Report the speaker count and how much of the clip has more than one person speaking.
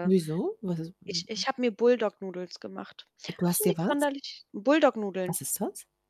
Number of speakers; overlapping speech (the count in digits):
2, about 11%